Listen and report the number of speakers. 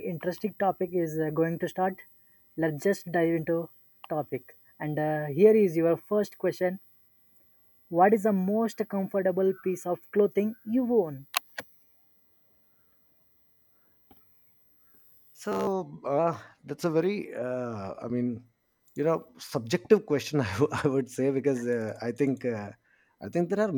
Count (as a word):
two